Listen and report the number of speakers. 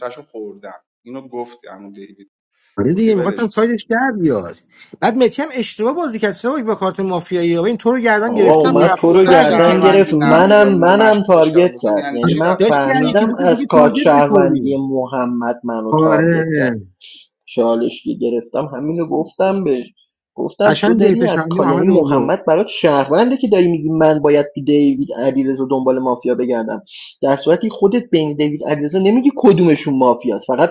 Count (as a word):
three